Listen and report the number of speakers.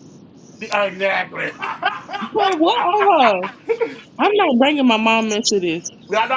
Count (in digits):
2